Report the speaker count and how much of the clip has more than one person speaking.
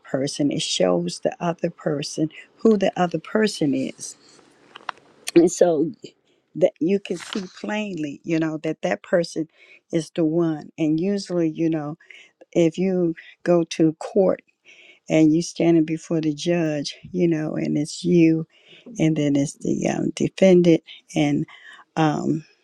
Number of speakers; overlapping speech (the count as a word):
one, no overlap